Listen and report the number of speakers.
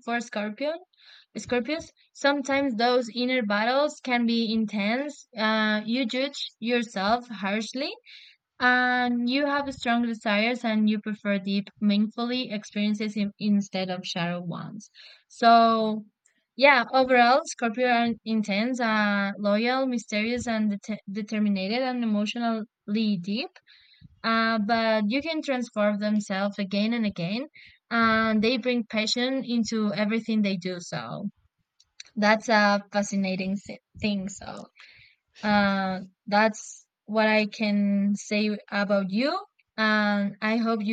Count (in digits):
1